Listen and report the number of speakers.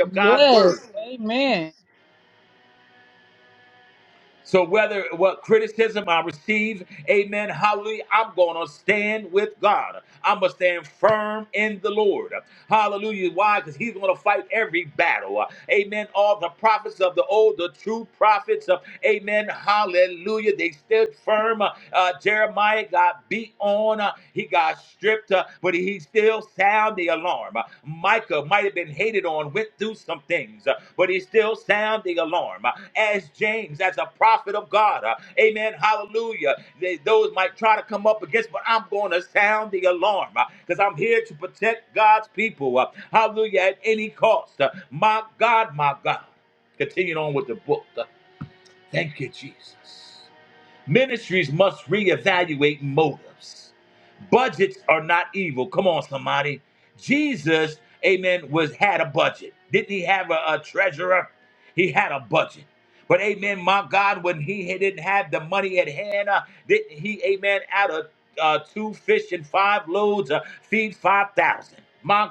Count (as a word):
two